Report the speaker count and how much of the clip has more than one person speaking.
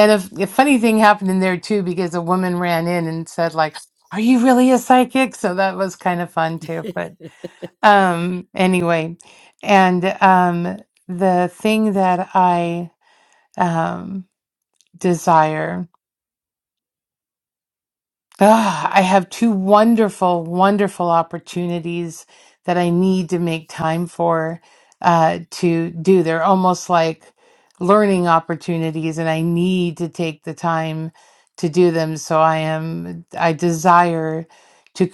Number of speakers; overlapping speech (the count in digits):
1, no overlap